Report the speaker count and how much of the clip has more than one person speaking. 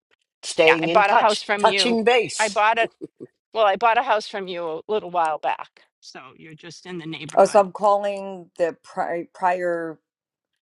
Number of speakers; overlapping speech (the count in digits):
3, about 16%